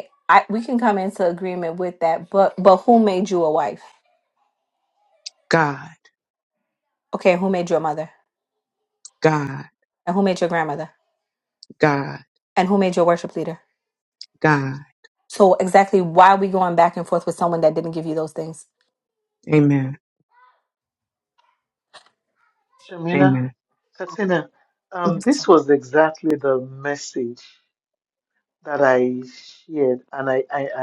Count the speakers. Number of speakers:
3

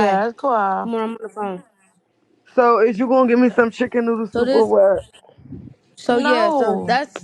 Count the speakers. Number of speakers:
3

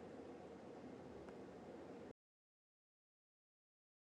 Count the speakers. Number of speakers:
0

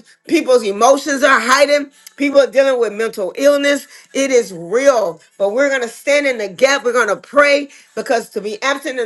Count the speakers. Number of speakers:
1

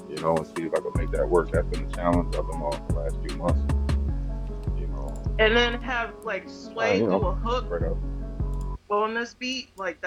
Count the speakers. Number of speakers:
2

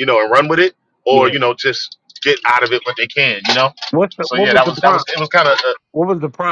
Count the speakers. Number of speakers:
2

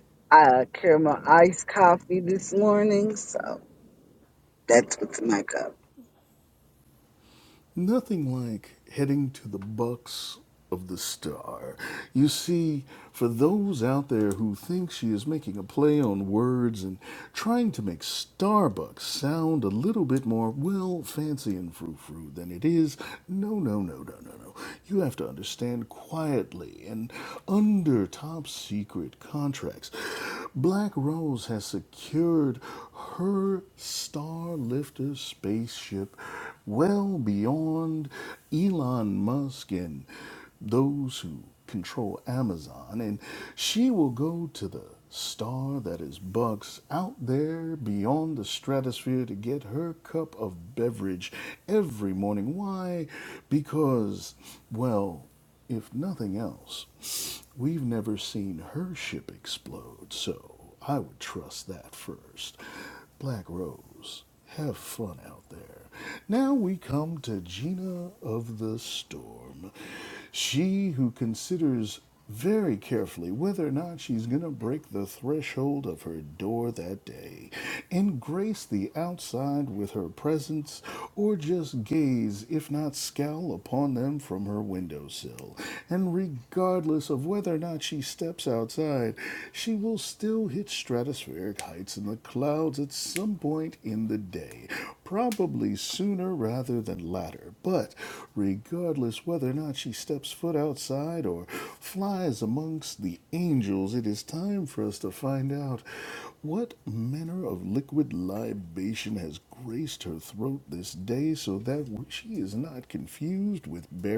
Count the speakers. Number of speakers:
2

